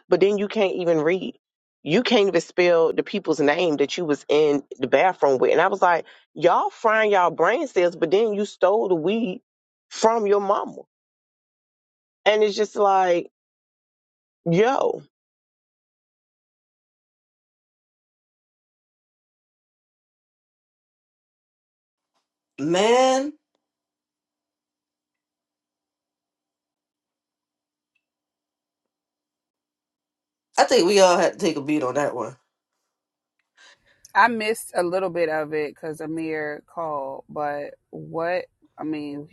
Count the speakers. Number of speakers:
3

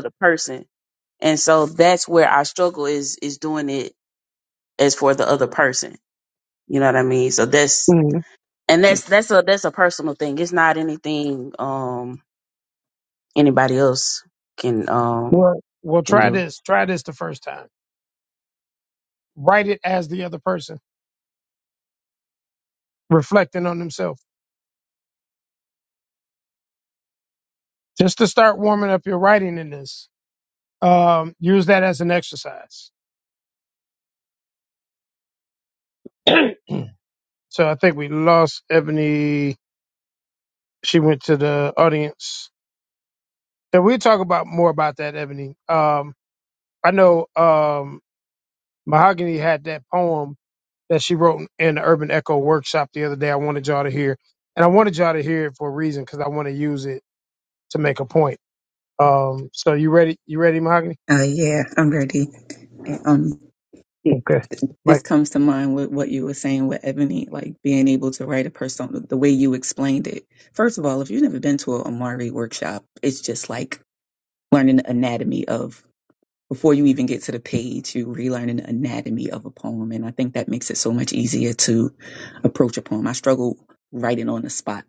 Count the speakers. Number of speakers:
3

